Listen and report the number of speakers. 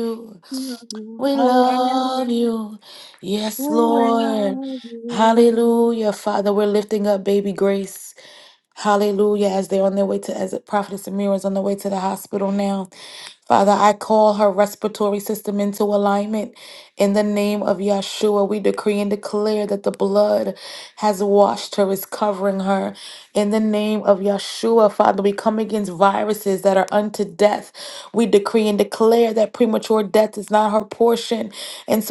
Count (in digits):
2